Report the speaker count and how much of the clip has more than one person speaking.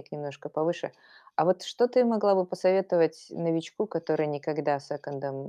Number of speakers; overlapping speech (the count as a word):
one, no overlap